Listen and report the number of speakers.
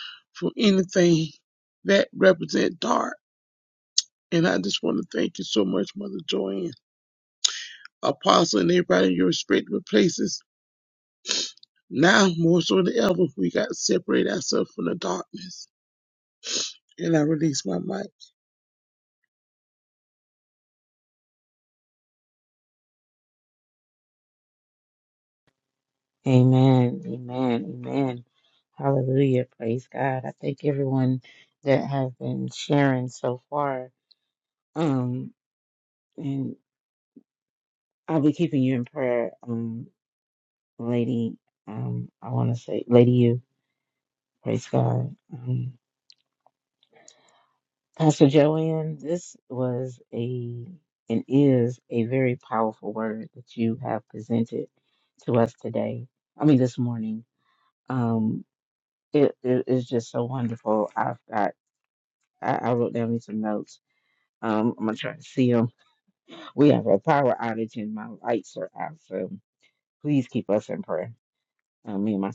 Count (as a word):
two